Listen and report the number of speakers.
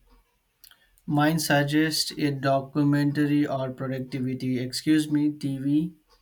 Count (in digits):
1